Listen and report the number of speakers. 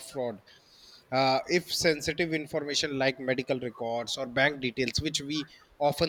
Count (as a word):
one